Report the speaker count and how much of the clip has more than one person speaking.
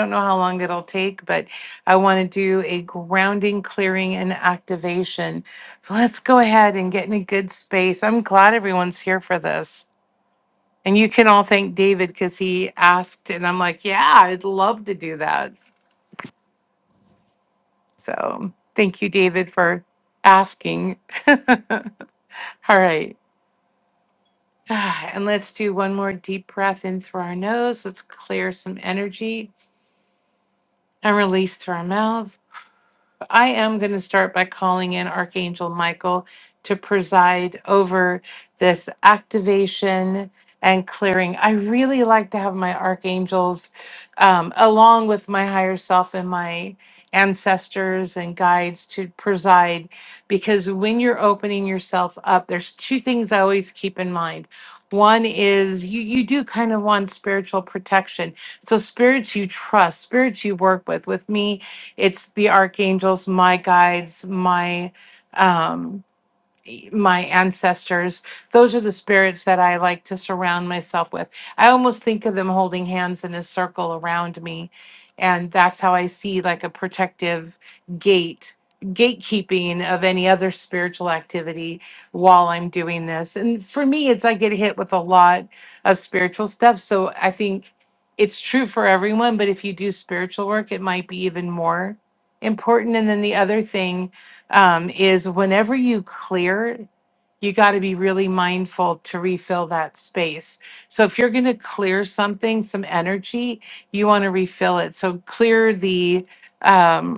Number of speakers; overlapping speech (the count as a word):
one, no overlap